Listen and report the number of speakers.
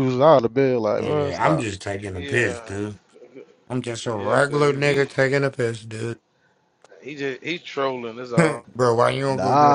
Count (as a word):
three